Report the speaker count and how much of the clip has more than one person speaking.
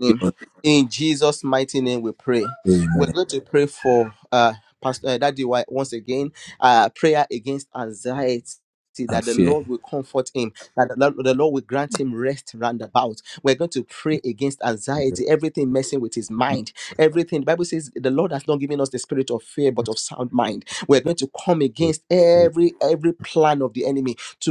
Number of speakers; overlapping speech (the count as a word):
two, about 4%